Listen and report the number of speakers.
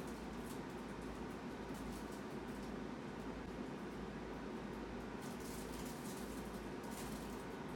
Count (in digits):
0